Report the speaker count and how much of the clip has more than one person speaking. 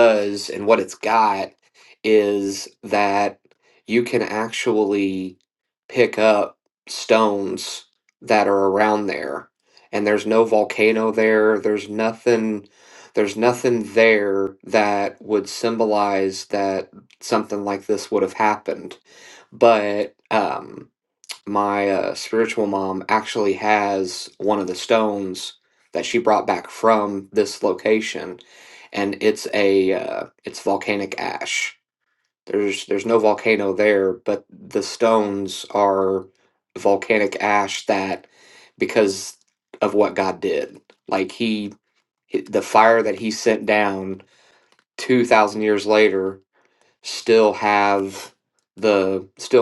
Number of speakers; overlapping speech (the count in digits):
1, no overlap